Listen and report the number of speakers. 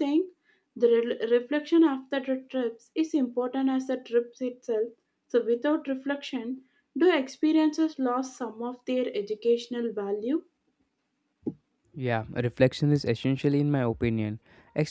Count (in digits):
2